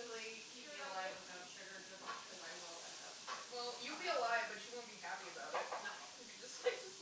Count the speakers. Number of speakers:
2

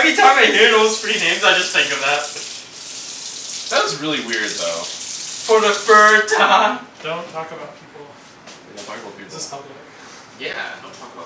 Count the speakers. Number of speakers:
4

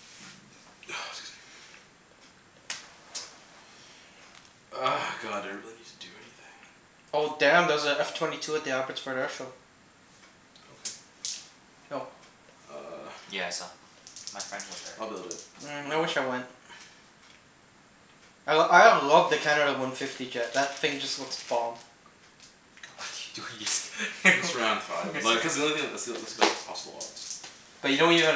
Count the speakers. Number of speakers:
3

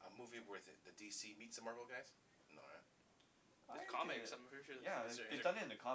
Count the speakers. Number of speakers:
3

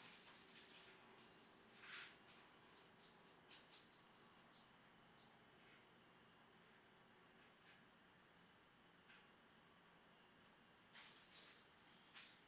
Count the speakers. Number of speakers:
0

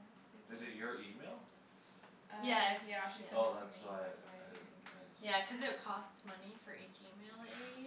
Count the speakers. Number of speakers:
3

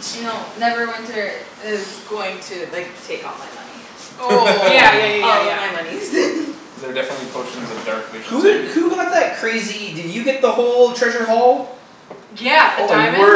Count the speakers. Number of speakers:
4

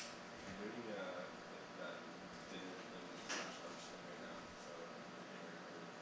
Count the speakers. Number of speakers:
1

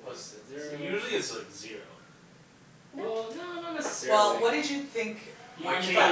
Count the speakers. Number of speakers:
3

